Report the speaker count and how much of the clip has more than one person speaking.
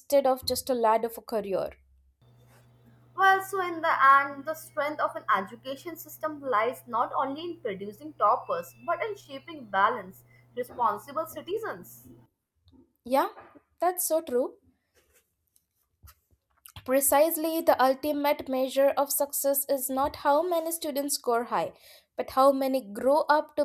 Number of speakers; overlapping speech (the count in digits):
2, no overlap